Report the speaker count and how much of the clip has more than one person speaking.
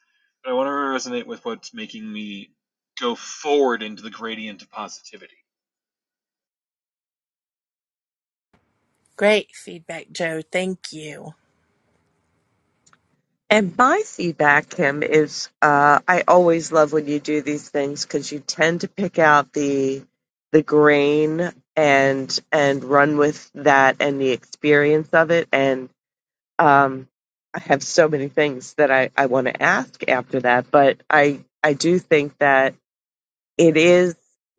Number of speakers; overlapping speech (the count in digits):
3, no overlap